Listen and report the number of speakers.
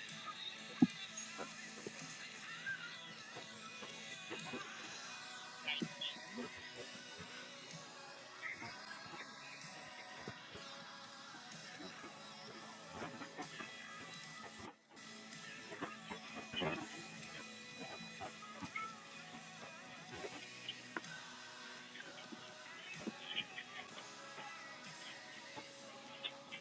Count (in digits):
0